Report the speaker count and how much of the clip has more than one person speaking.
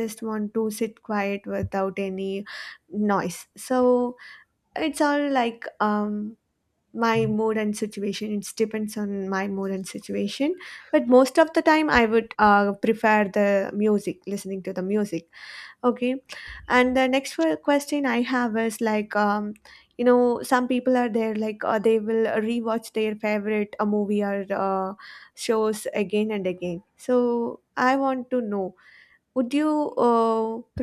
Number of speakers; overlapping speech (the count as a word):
one, no overlap